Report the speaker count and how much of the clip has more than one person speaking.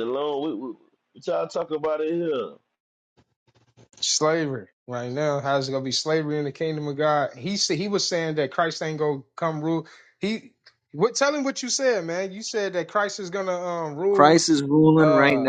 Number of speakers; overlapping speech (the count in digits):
3, about 5%